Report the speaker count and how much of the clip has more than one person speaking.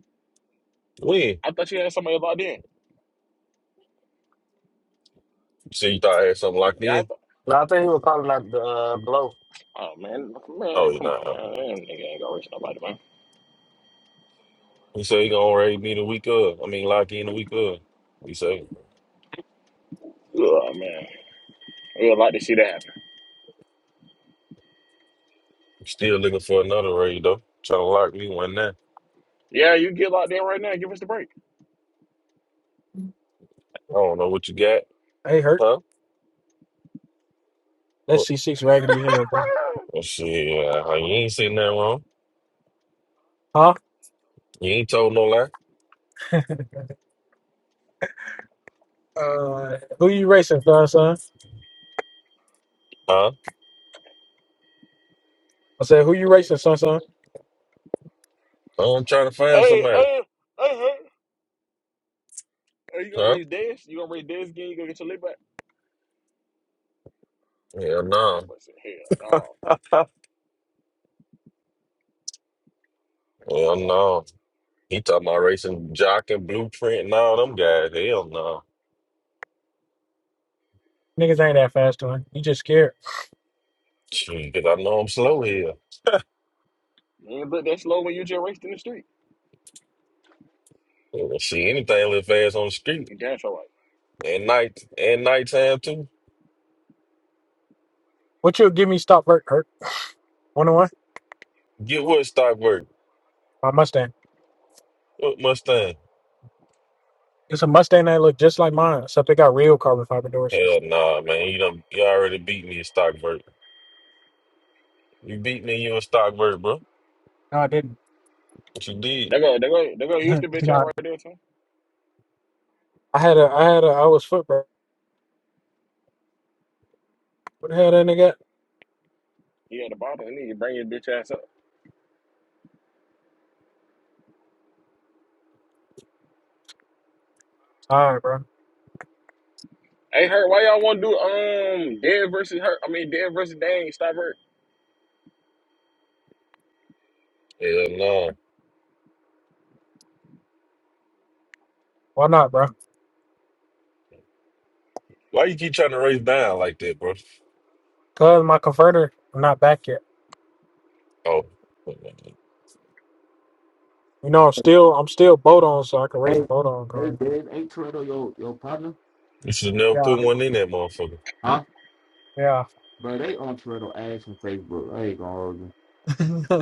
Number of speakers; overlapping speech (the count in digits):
5, about 2%